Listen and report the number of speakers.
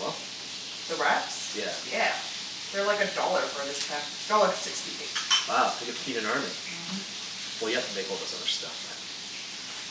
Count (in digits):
2